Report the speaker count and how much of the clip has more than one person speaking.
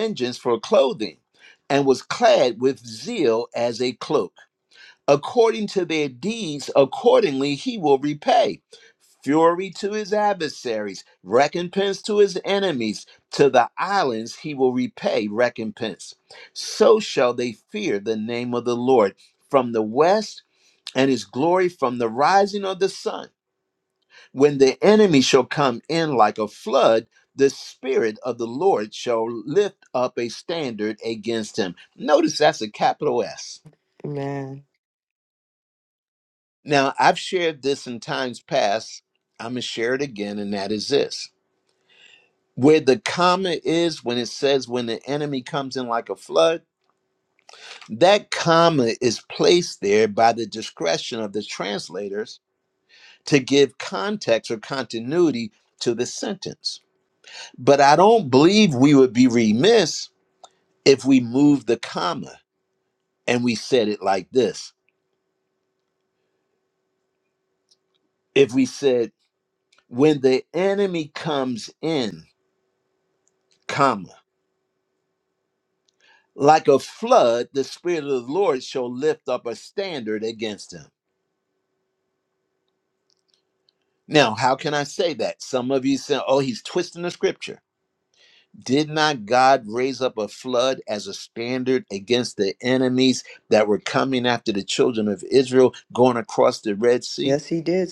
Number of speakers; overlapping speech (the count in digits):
2, under 1%